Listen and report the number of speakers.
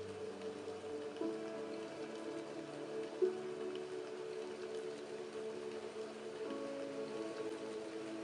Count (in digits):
0